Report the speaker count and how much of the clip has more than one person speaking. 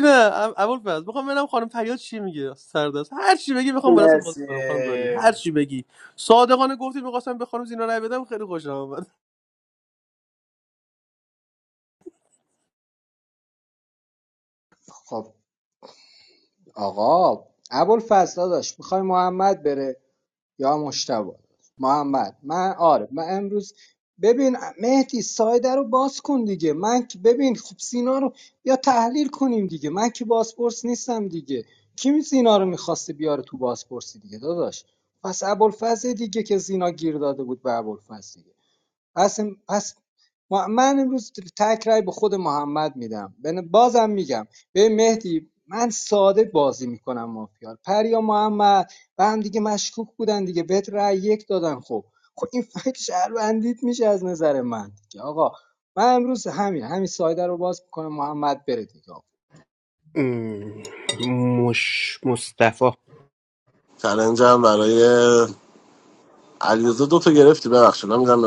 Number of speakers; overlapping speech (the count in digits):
4, about 1%